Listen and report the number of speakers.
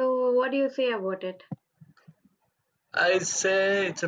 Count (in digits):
2